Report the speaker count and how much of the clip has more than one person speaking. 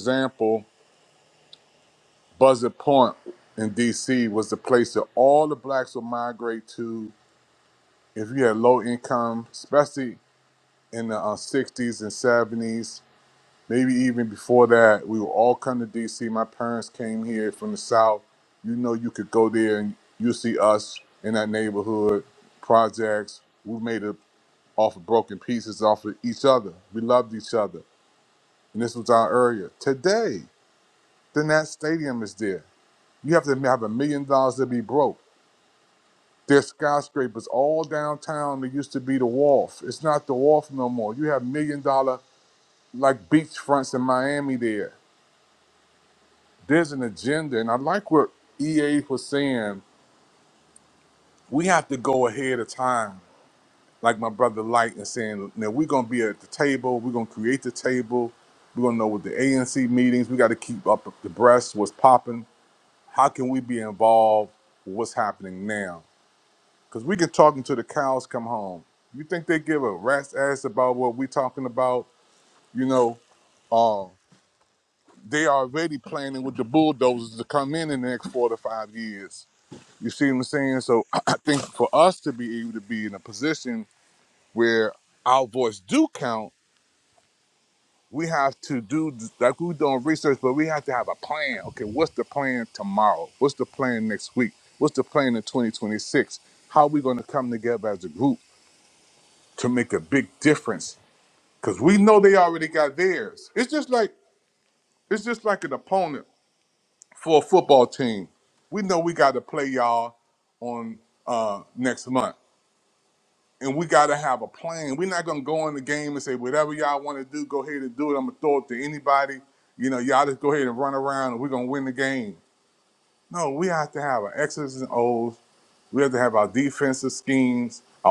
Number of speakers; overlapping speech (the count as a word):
one, no overlap